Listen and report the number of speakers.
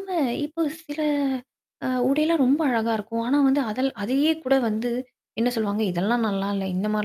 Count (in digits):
1